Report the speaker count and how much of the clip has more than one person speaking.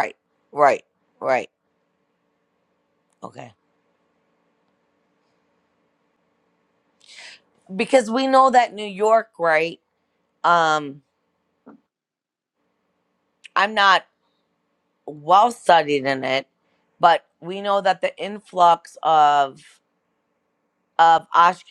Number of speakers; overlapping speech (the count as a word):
one, no overlap